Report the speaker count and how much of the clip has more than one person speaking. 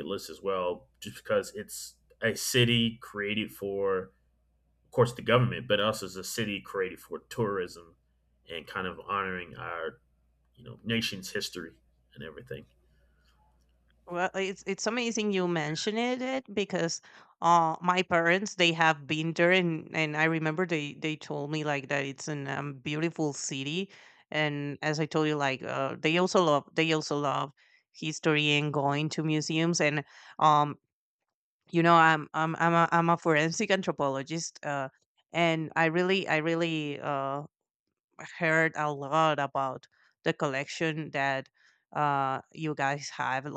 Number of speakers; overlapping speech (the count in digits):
2, no overlap